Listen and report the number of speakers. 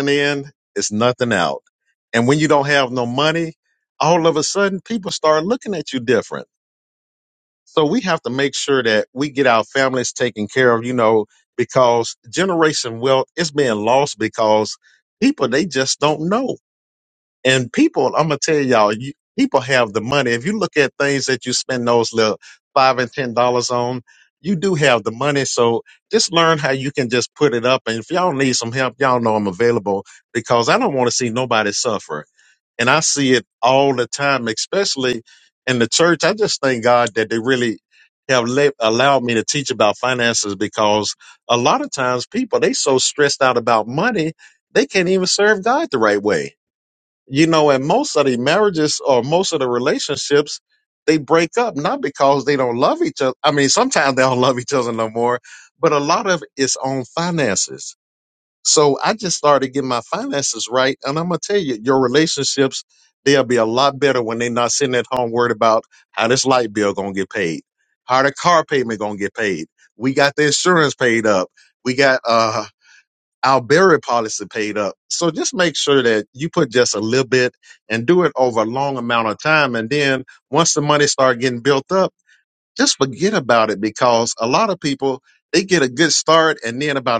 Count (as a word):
one